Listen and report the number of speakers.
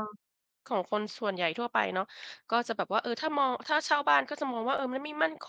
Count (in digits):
1